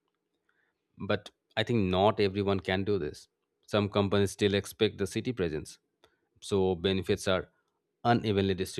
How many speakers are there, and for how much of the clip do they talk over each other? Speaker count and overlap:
1, no overlap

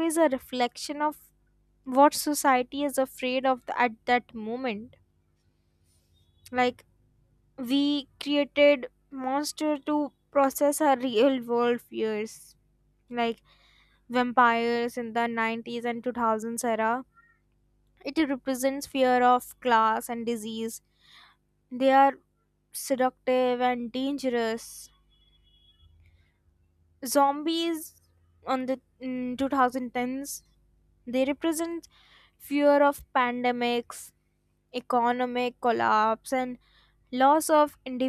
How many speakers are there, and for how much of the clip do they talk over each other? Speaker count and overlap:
1, no overlap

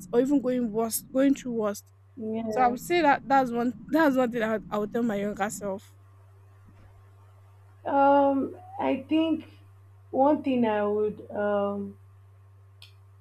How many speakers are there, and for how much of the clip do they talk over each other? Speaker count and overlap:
2, about 2%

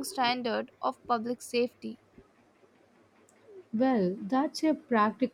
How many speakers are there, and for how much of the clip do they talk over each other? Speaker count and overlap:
2, no overlap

